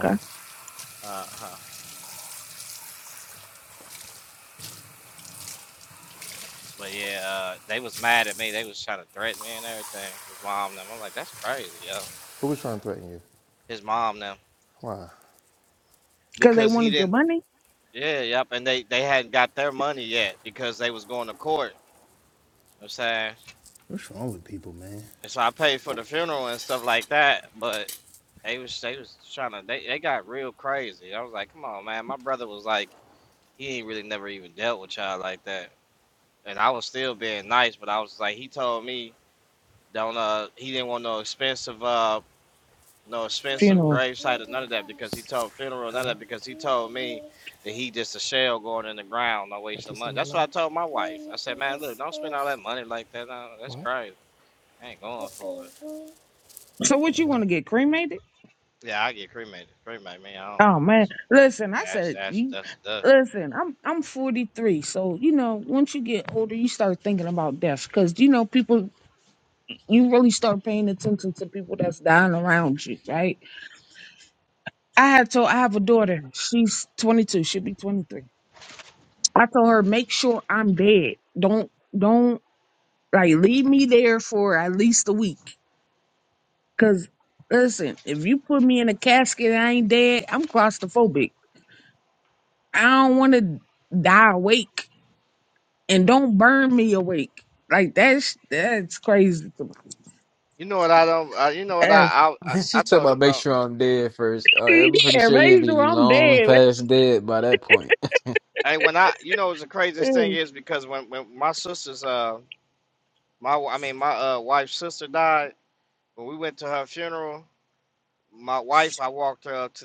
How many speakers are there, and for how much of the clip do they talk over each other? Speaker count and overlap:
4, about 5%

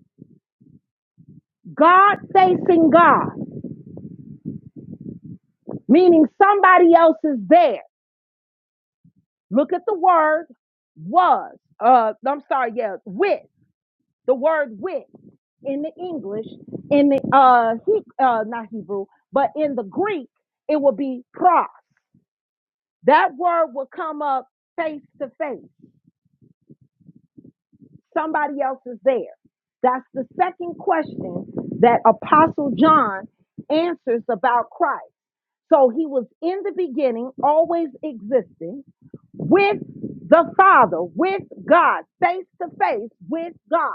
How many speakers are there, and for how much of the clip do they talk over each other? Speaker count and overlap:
1, no overlap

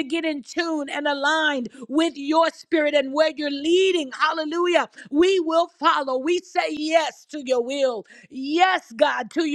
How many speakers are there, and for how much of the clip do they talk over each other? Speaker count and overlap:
1, no overlap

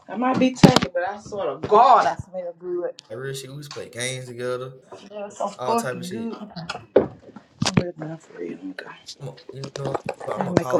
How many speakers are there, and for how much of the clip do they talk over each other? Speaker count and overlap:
2, about 10%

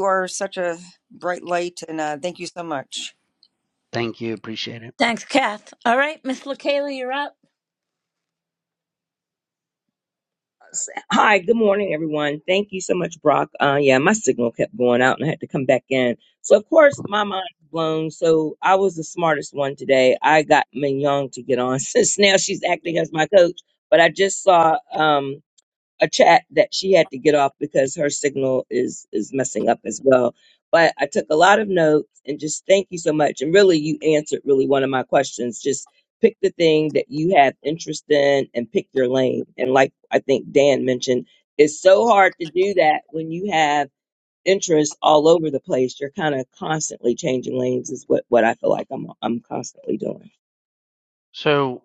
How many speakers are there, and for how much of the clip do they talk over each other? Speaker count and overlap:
4, no overlap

